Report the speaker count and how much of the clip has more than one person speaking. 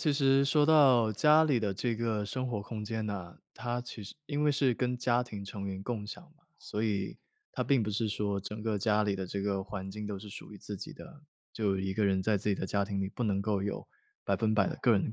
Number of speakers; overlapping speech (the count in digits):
1, no overlap